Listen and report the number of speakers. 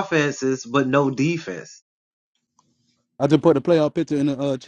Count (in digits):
2